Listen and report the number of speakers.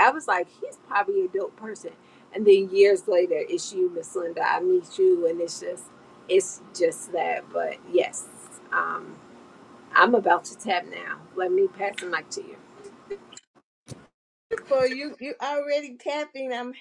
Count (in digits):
2